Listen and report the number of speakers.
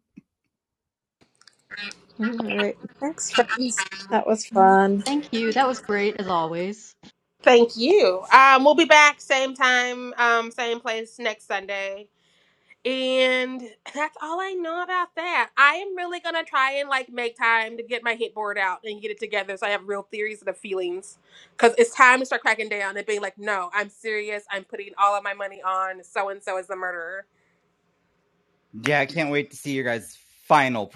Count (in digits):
4